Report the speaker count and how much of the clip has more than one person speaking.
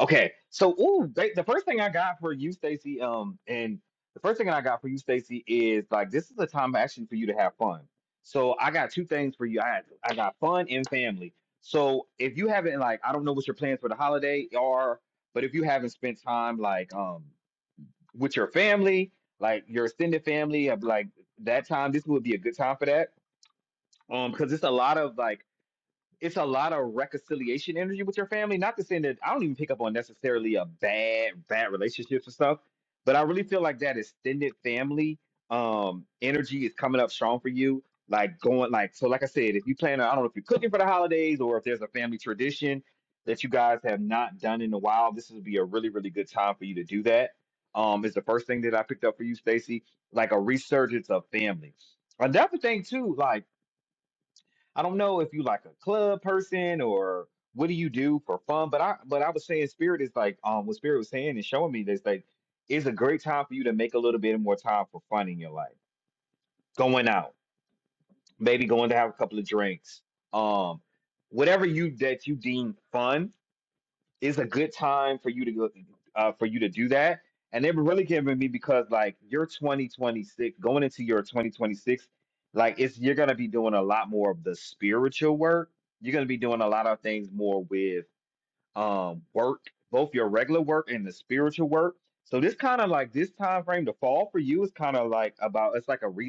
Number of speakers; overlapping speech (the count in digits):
1, no overlap